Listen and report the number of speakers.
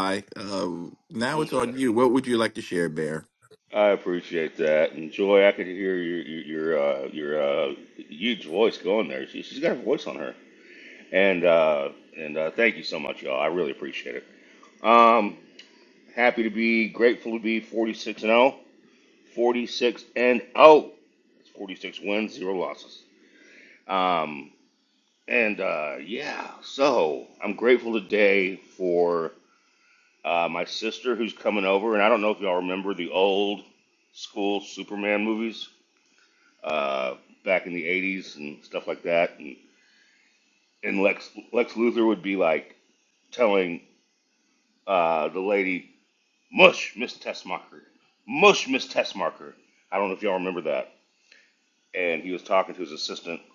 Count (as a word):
two